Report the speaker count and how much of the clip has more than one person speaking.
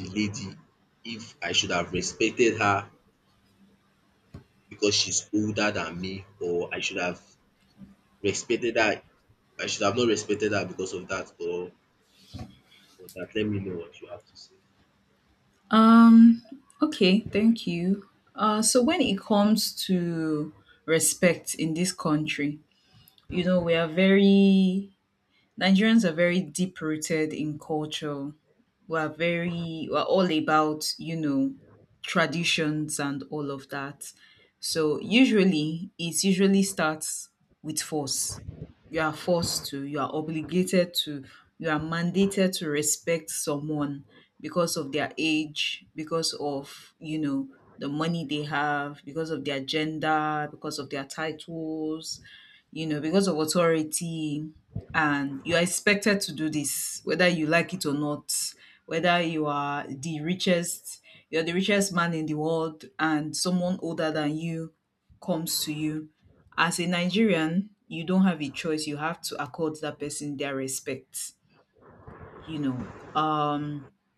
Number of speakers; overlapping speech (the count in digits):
2, no overlap